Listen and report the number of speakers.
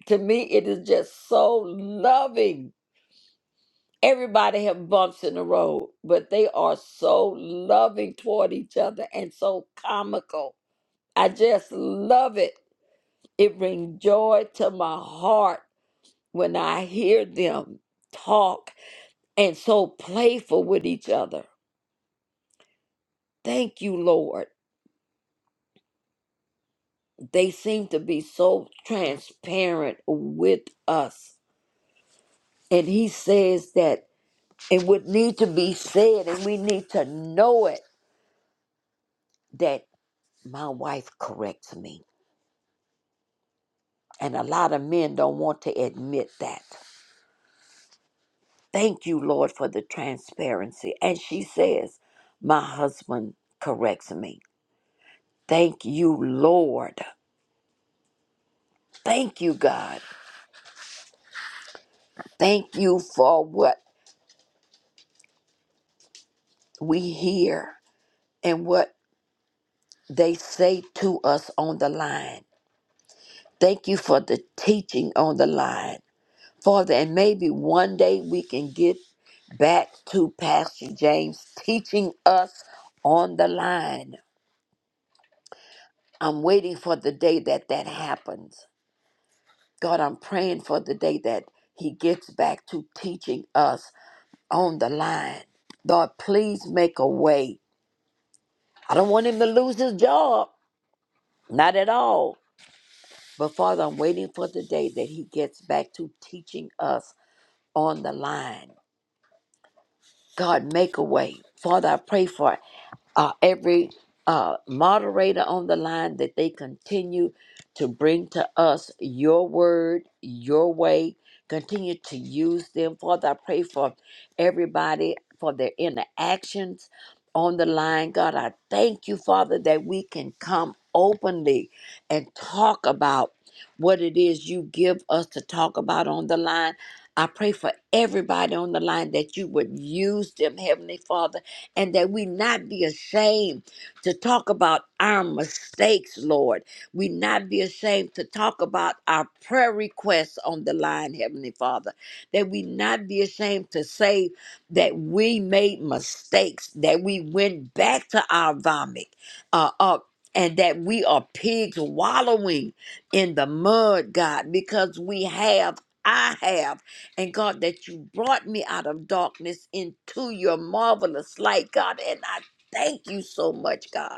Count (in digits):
1